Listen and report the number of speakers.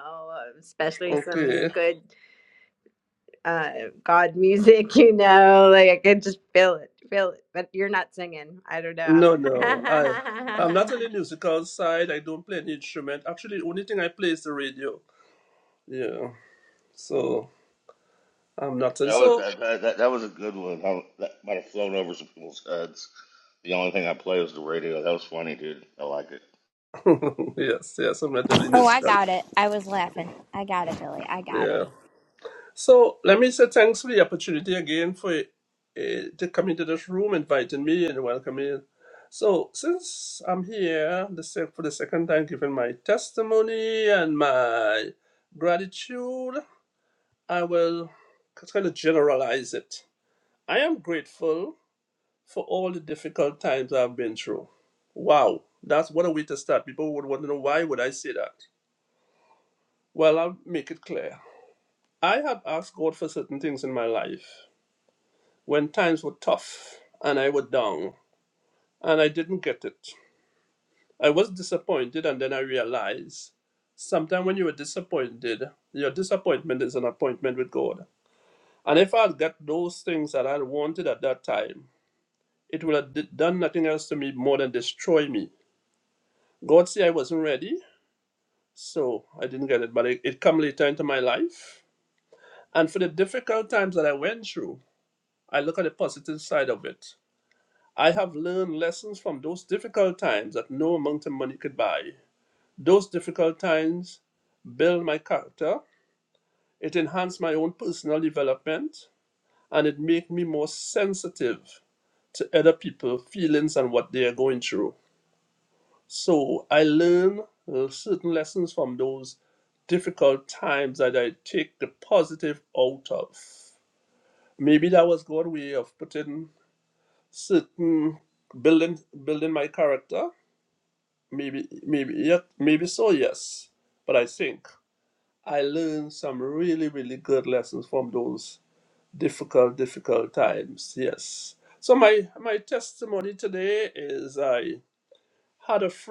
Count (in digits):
4